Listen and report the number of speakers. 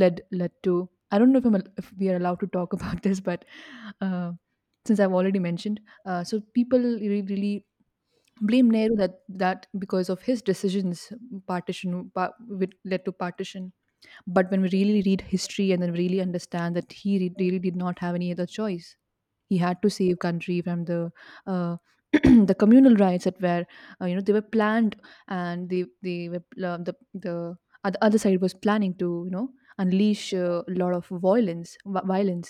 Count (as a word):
one